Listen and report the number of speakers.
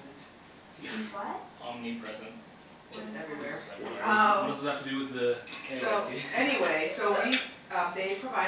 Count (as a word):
four